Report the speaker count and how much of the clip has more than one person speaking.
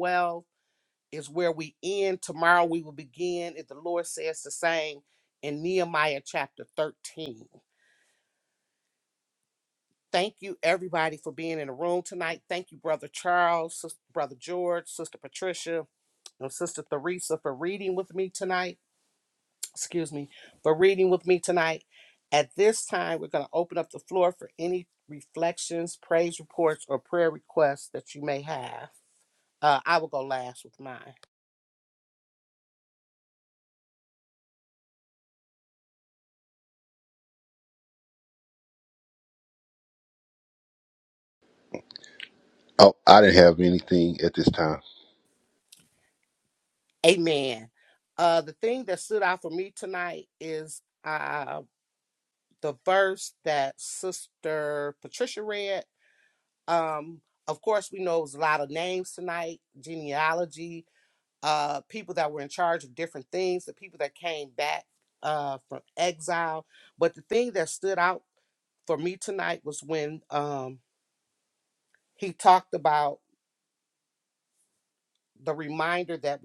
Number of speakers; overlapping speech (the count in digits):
2, no overlap